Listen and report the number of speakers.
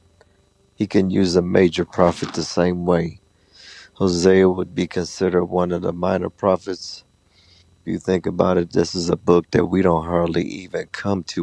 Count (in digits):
1